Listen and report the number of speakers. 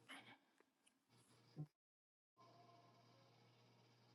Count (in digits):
0